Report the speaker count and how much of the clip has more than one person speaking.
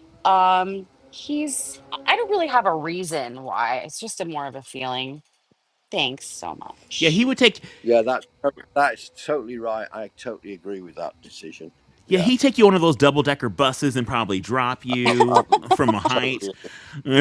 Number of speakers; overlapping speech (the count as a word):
three, about 7%